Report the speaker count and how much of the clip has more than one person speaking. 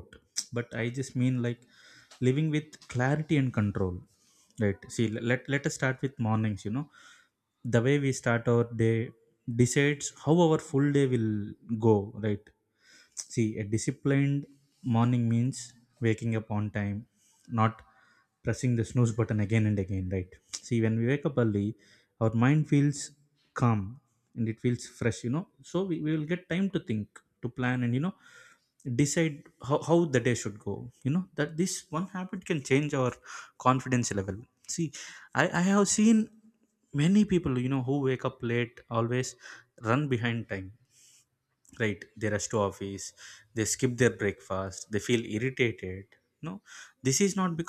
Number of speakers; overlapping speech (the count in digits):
1, no overlap